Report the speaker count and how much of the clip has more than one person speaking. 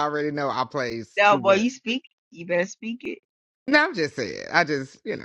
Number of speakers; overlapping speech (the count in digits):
2, about 9%